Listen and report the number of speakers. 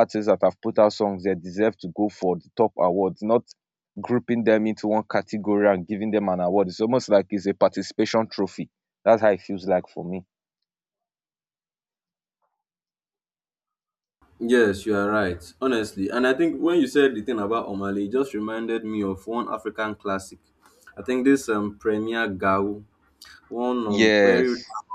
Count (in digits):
2